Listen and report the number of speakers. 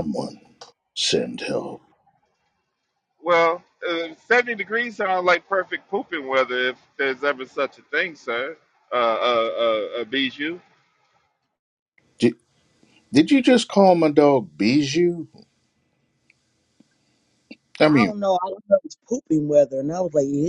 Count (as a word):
three